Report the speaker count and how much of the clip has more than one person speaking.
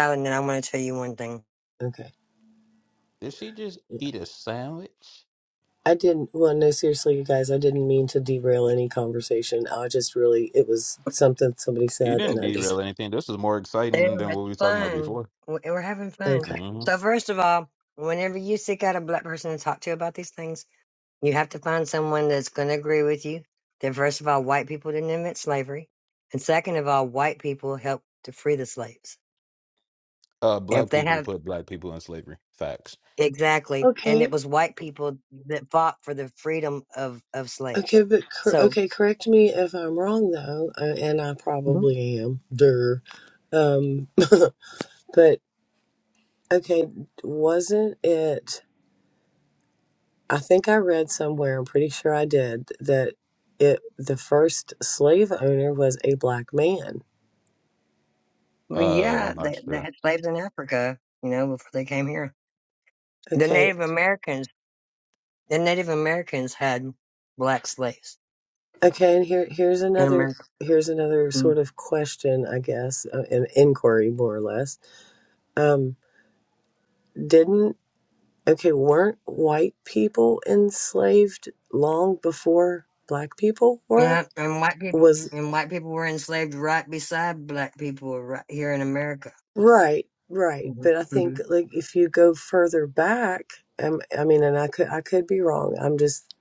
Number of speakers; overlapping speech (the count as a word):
three, about 7%